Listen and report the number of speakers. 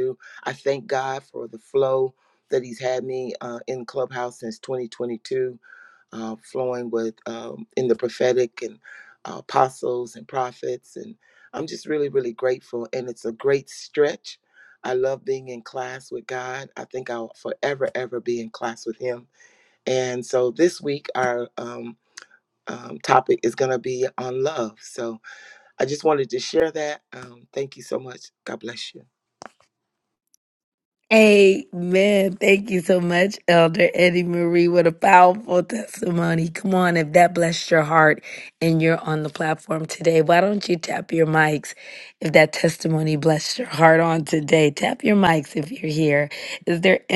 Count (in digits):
2